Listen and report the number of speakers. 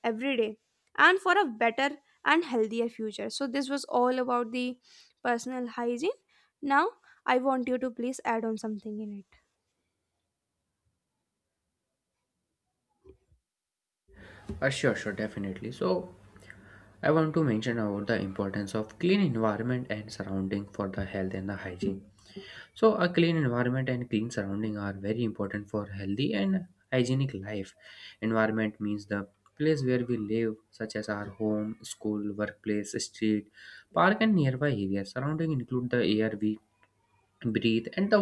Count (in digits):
2